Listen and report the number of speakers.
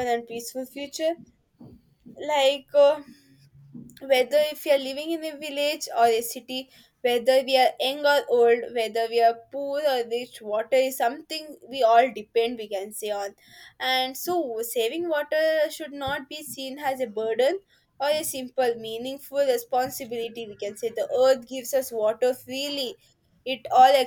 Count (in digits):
1